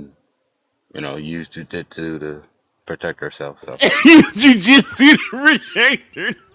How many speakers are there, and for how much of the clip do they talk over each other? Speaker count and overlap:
2, no overlap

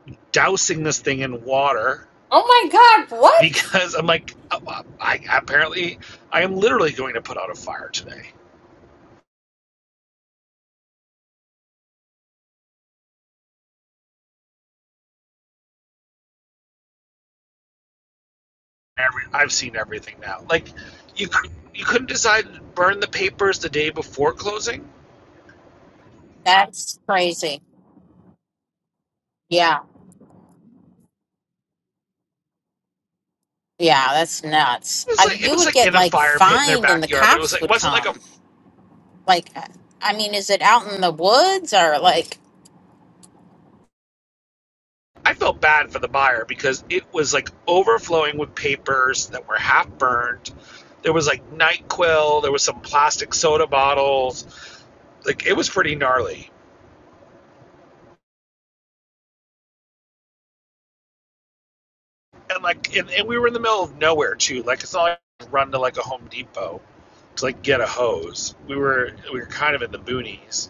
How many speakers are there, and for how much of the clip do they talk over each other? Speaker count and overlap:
3, about 4%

